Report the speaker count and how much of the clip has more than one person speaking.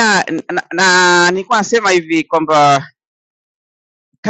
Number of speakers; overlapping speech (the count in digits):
1, no overlap